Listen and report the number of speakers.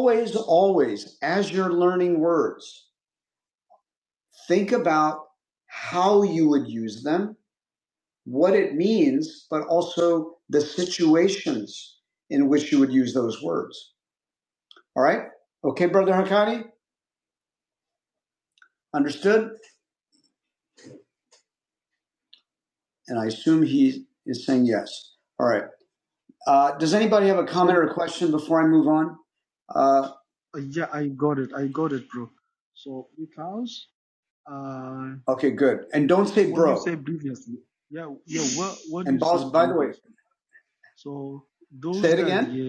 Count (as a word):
two